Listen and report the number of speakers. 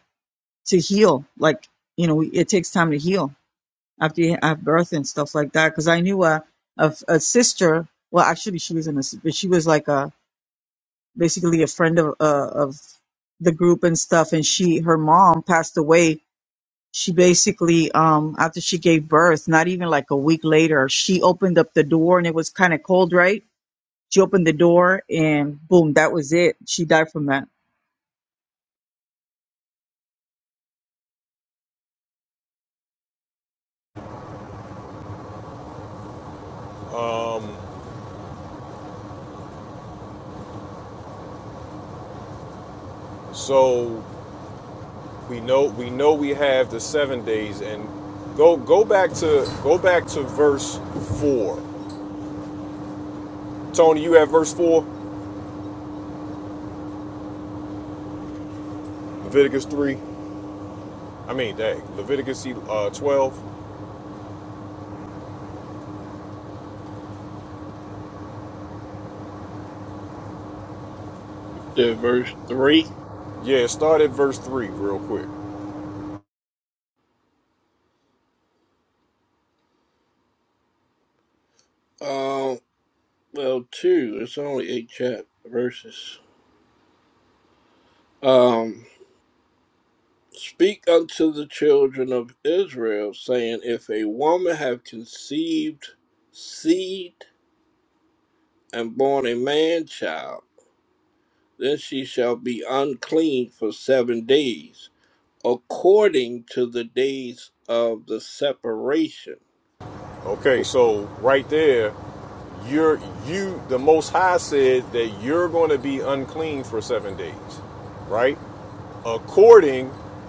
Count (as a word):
three